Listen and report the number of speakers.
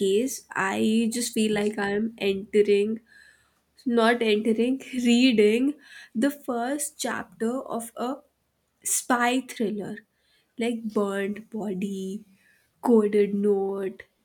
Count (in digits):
1